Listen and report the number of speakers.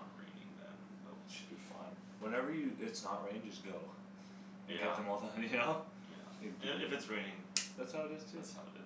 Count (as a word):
two